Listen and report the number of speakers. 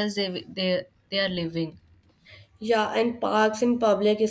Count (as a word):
two